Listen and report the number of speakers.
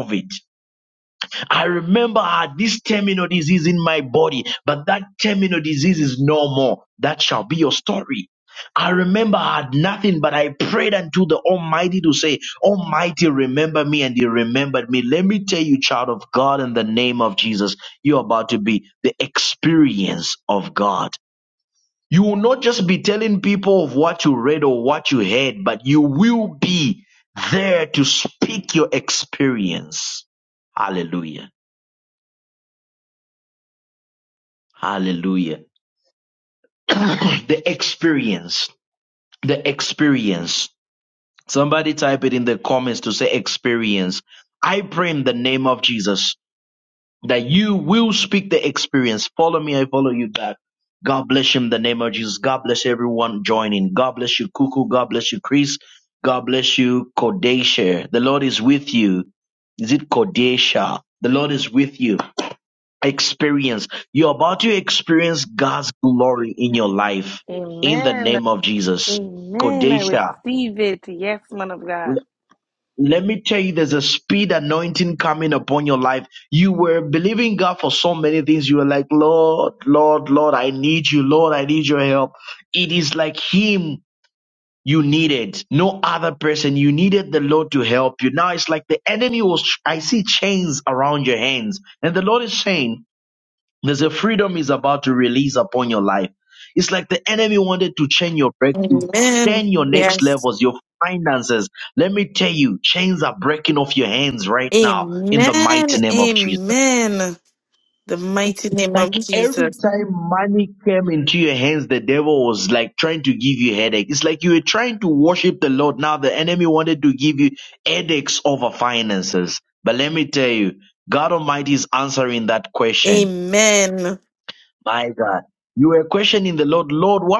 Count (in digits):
2